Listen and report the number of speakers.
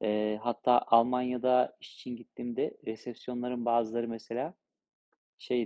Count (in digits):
1